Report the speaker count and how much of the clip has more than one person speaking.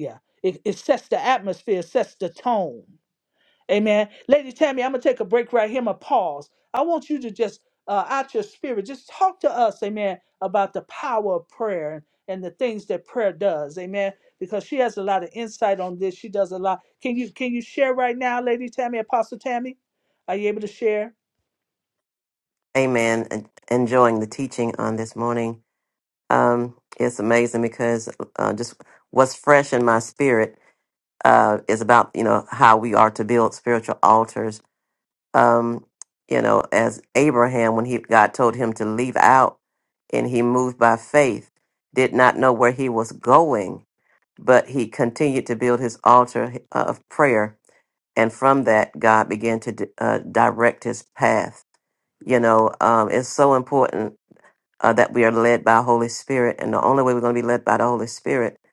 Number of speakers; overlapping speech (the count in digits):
2, no overlap